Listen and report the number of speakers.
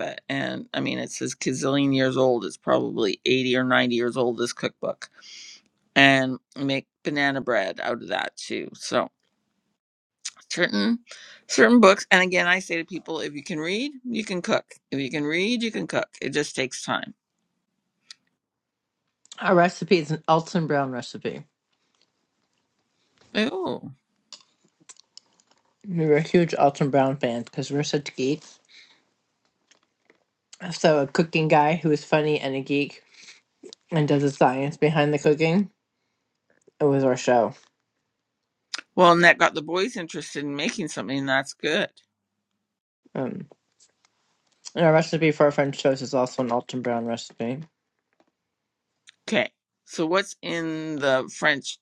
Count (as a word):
two